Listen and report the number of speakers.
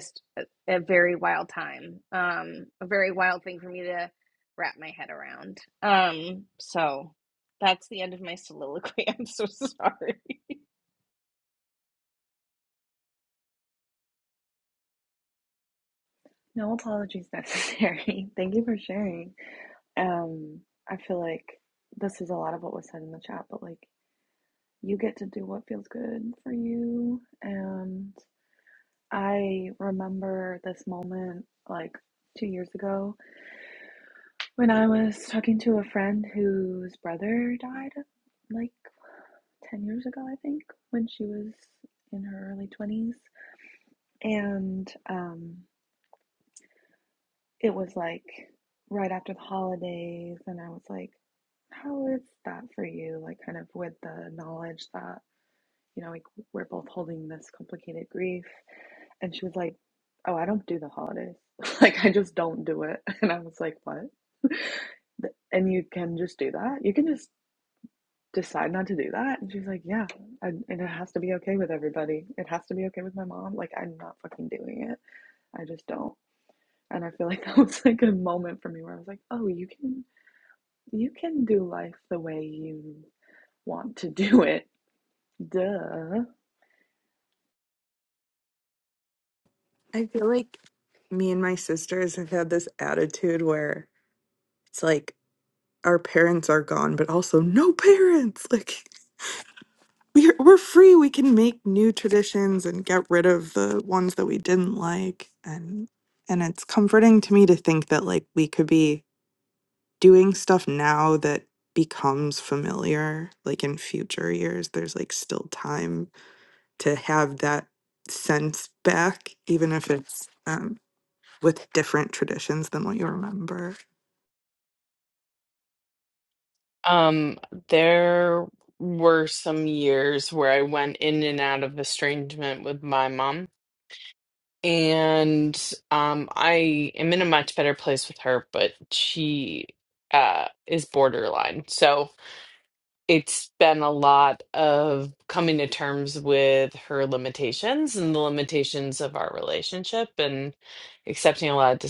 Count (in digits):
4